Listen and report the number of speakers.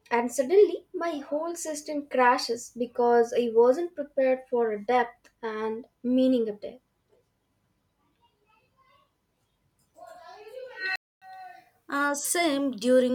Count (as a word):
two